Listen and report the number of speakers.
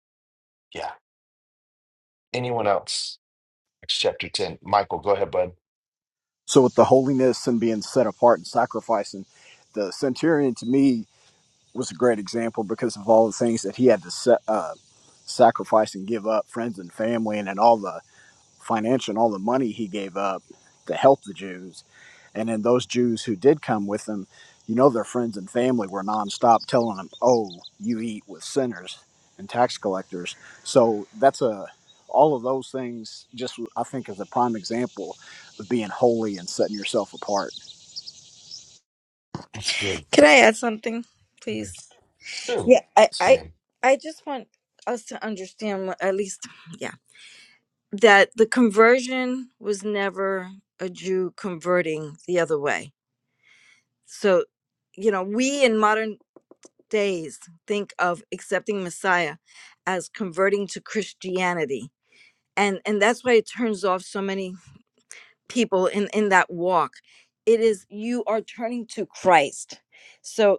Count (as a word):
three